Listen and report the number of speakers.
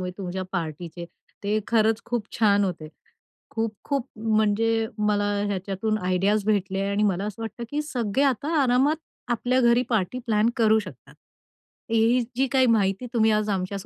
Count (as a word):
one